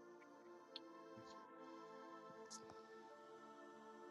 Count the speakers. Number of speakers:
0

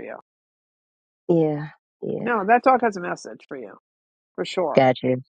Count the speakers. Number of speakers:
2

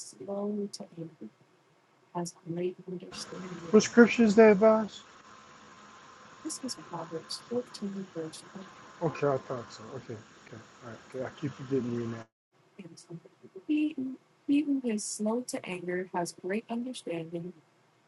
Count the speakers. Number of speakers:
2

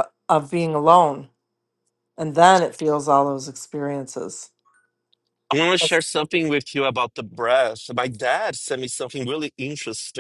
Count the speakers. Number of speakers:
2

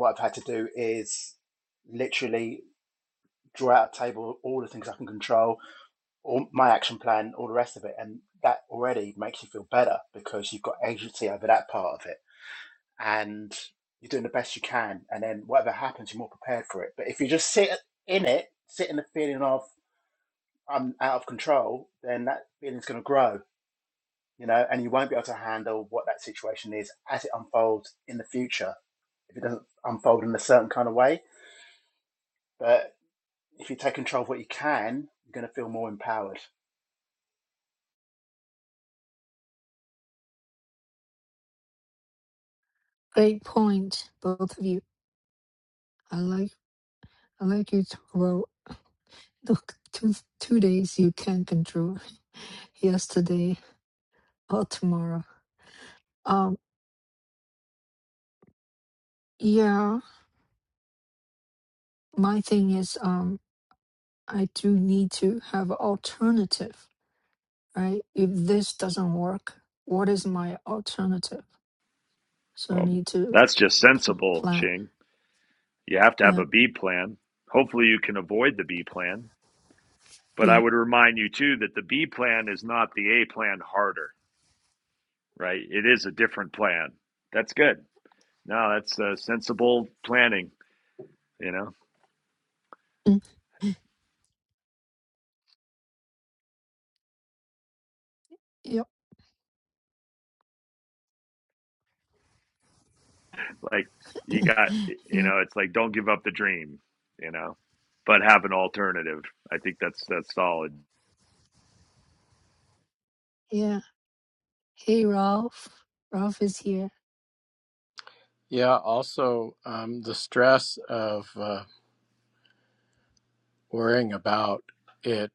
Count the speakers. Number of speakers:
4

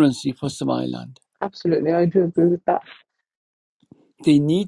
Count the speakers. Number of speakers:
2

